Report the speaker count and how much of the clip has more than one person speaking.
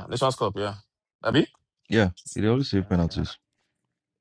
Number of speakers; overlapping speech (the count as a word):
two, about 2%